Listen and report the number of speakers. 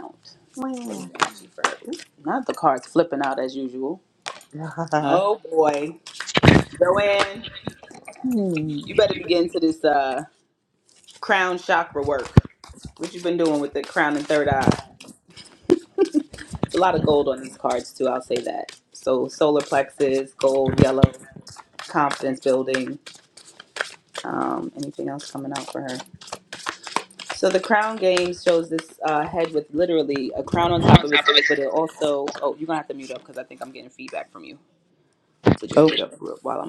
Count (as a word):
two